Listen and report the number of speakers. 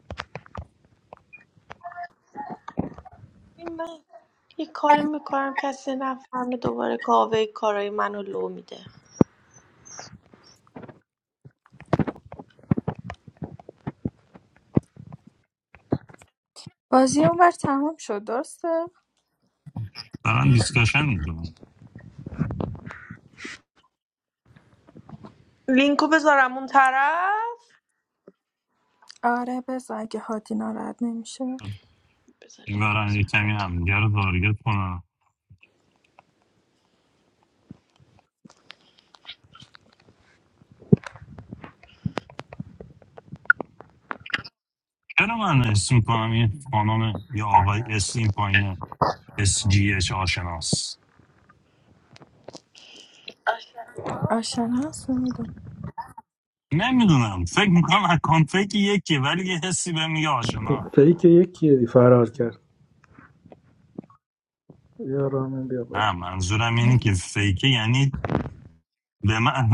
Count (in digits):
4